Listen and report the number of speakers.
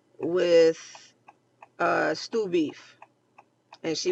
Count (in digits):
1